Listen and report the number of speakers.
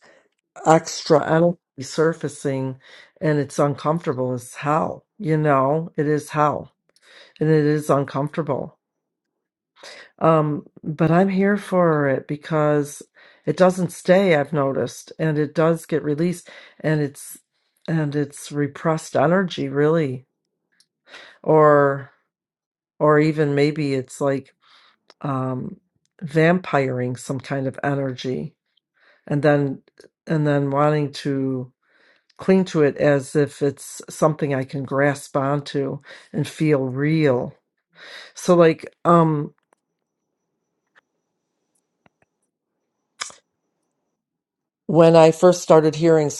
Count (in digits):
1